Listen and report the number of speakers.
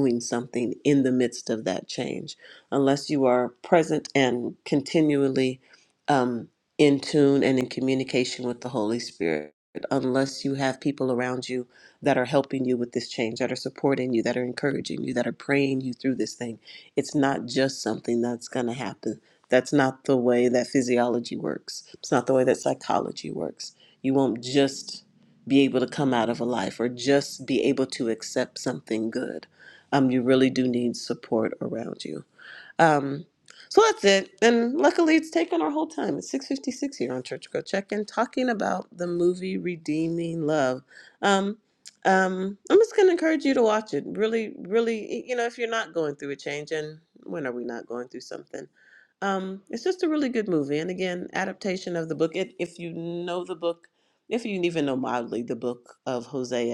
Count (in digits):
1